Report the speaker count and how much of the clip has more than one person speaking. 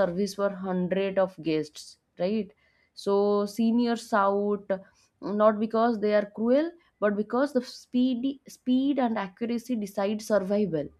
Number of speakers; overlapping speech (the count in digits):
1, no overlap